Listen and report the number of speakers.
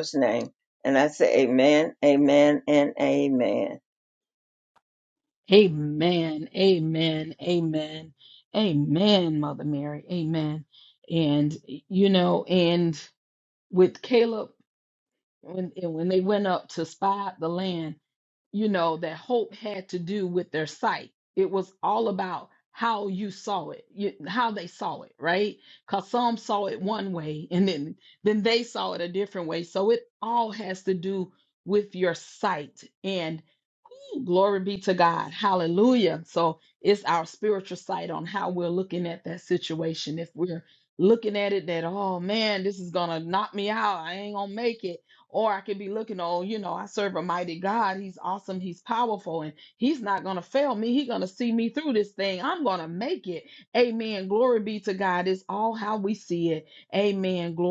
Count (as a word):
two